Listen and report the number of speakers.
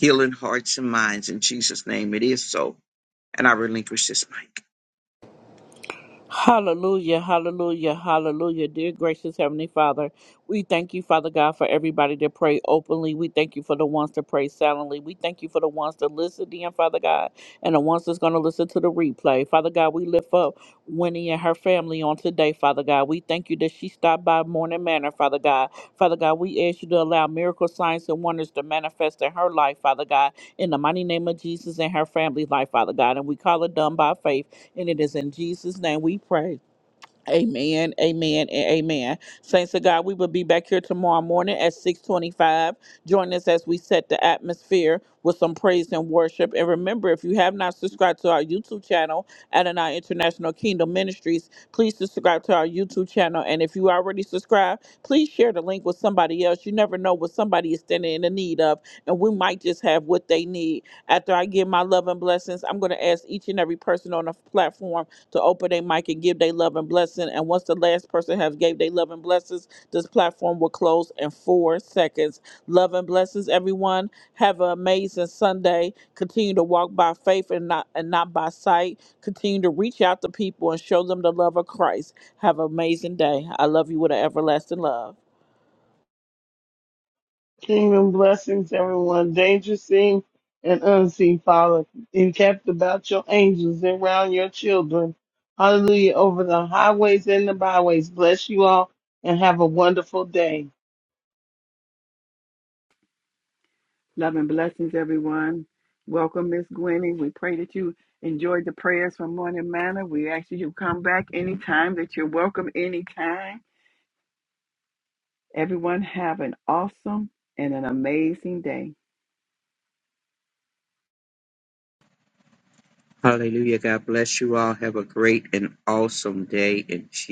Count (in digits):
4